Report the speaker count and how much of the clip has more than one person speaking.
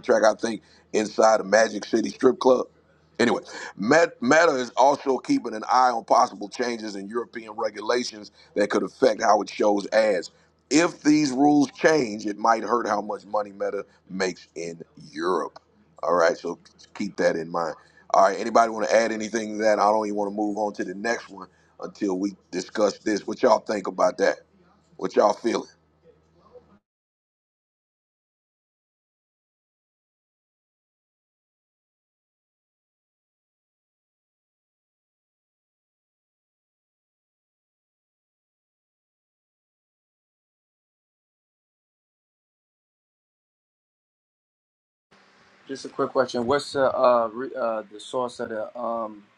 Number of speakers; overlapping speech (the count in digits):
2, no overlap